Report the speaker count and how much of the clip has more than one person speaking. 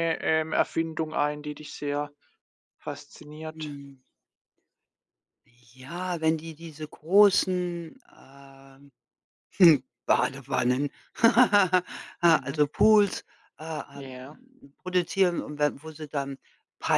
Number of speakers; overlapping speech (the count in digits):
2, about 4%